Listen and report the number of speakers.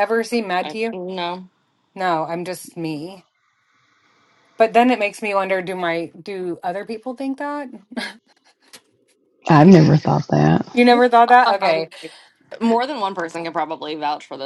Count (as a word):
three